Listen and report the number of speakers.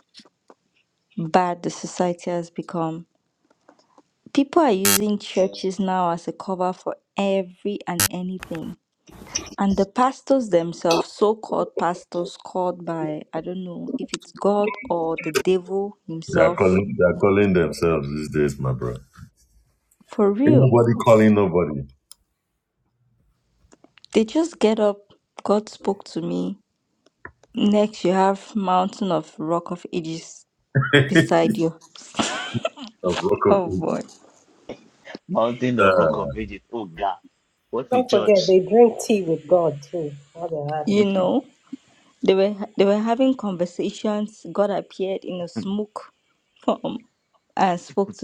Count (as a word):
four